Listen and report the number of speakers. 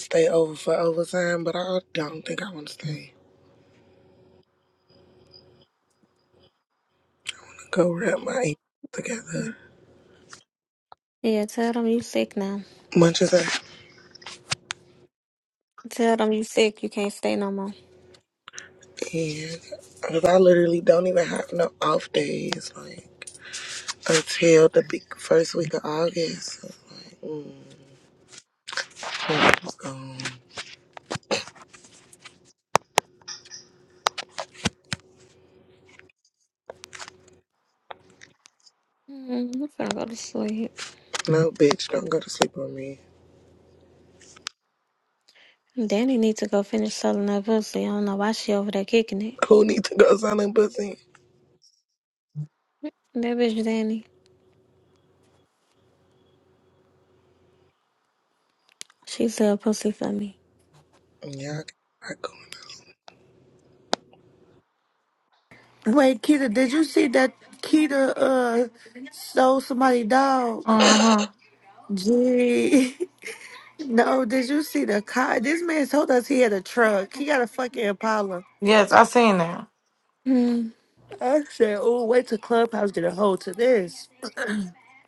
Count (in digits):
4